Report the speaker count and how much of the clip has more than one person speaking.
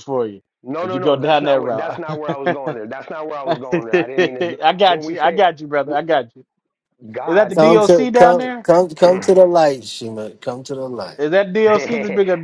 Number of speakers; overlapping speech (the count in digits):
3, about 35%